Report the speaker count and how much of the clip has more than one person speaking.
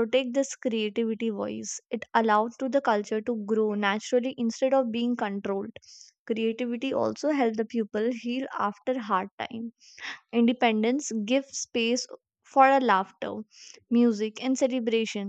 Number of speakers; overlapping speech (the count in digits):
1, no overlap